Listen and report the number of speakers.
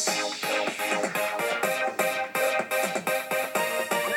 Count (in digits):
0